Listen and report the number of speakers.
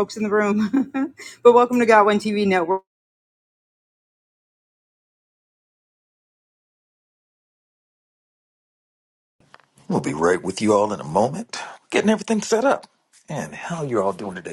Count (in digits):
2